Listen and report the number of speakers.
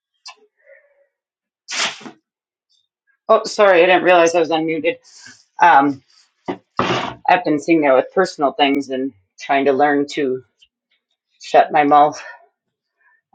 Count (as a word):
one